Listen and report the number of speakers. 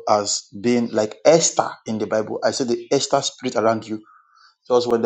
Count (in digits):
1